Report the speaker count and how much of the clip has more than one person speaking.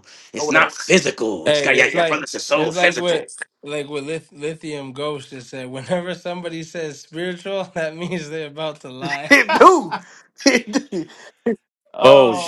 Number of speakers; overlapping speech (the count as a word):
three, about 18%